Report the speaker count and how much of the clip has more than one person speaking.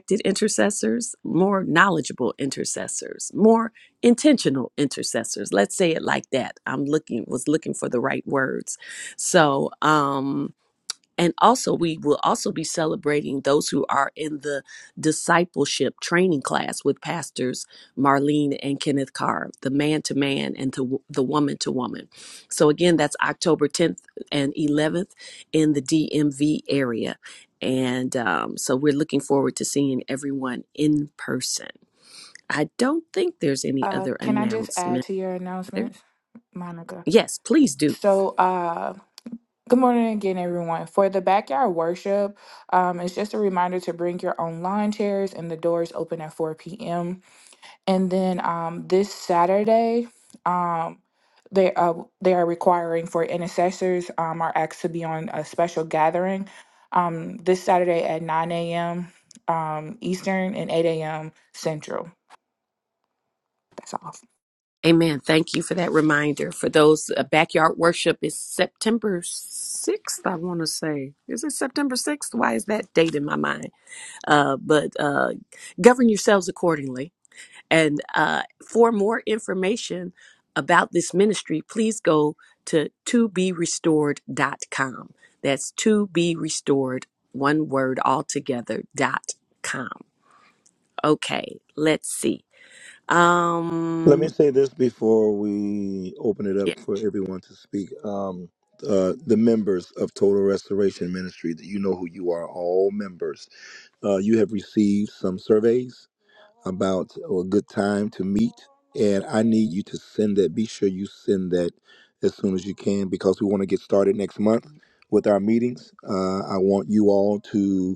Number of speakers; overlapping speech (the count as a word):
three, about 1%